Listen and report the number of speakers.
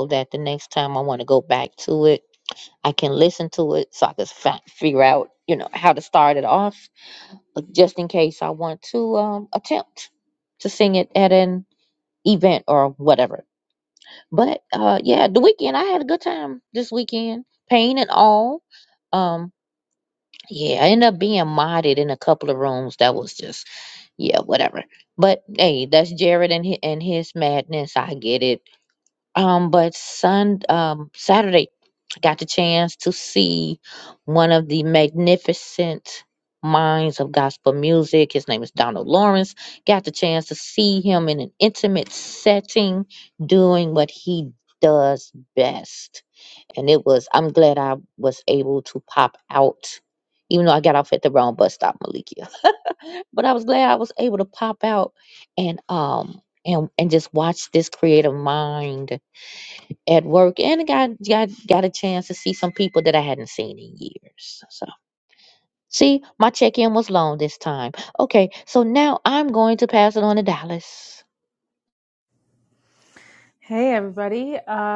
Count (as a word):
two